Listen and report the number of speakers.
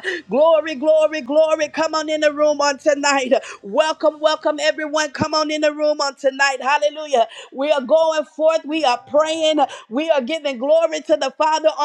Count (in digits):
1